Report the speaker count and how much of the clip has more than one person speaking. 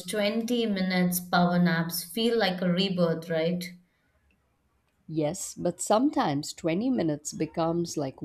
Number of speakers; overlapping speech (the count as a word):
two, no overlap